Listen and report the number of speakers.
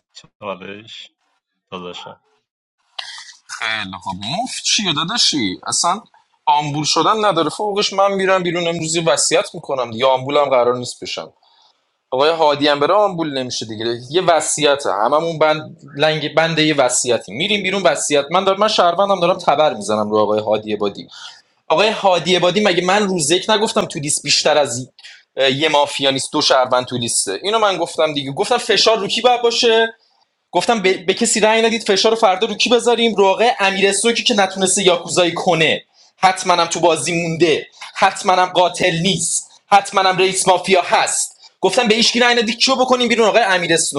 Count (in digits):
2